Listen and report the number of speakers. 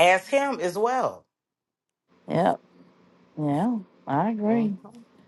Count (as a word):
two